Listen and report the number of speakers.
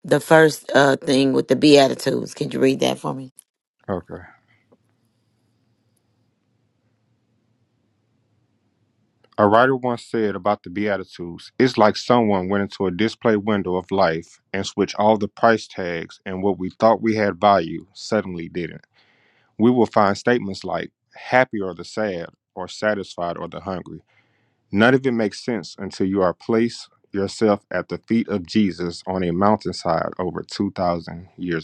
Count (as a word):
two